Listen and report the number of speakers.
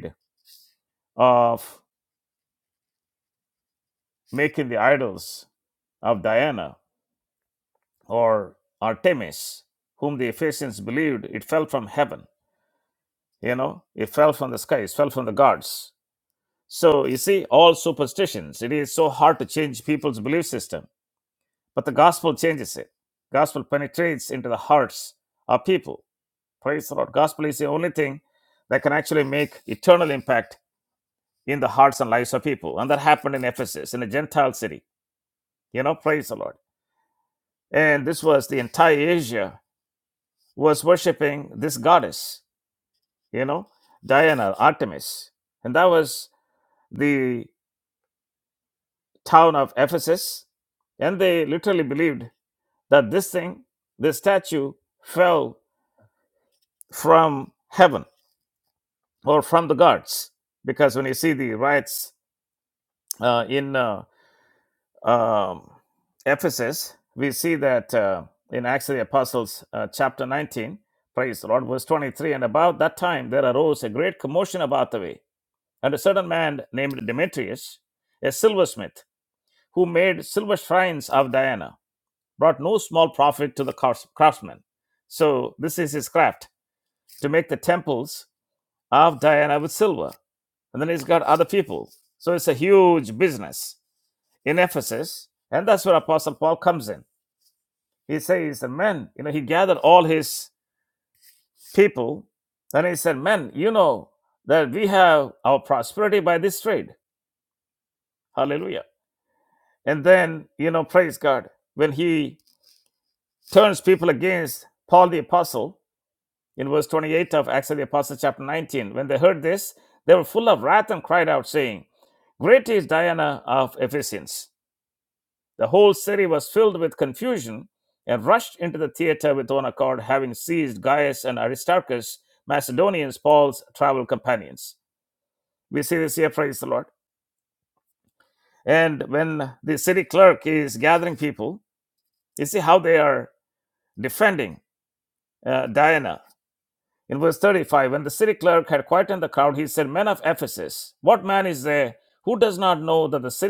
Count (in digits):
1